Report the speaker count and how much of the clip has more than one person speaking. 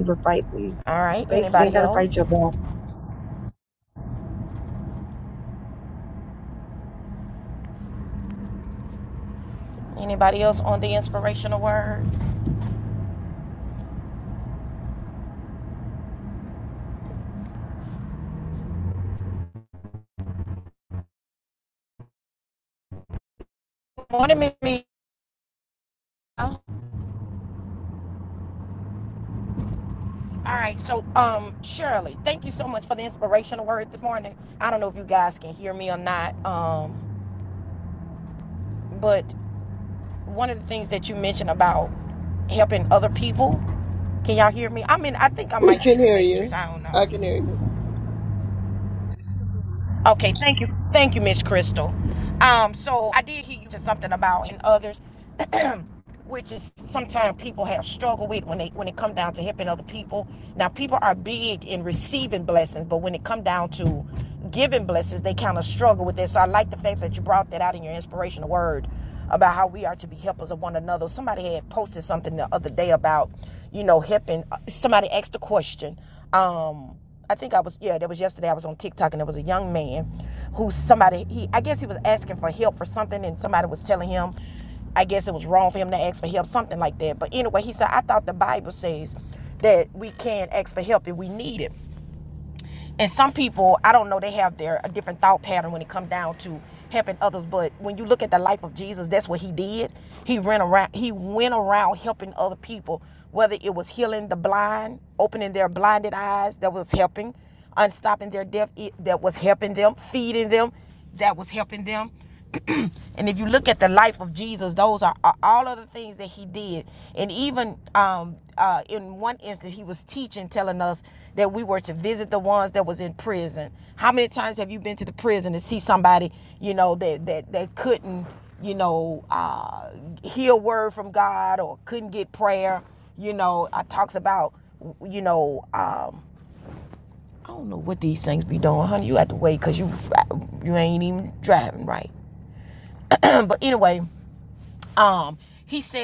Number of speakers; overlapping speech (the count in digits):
3, about 1%